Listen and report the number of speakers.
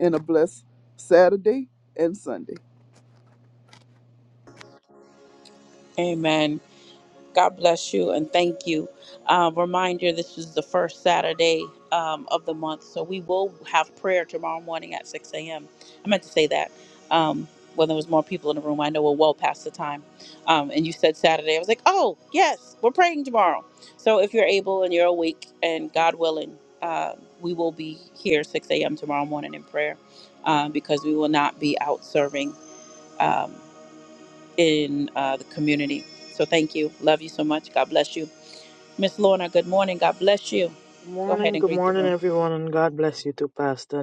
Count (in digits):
3